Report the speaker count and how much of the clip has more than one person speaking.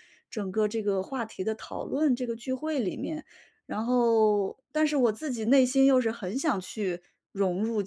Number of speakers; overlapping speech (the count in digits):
1, no overlap